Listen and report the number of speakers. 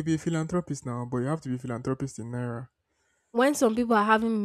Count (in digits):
2